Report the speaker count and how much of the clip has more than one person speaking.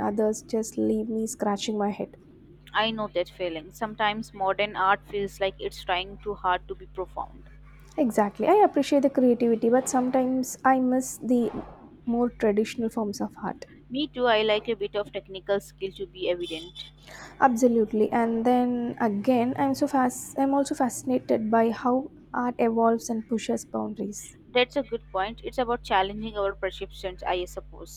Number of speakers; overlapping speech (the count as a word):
two, no overlap